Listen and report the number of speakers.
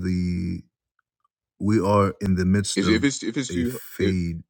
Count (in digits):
2